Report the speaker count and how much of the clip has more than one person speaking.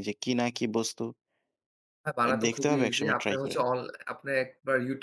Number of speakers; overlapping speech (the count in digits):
2, about 27%